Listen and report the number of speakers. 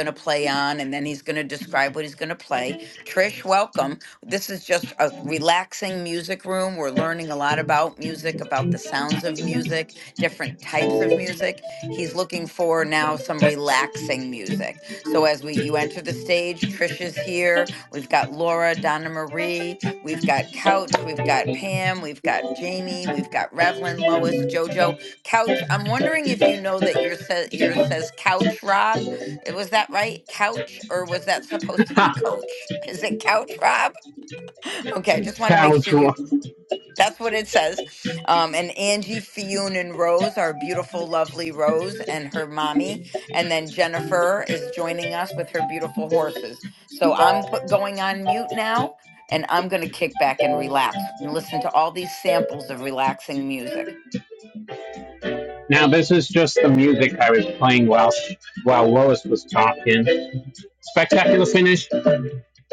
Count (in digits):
2